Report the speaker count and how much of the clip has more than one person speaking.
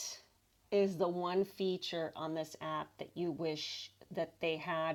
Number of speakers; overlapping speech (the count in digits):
1, no overlap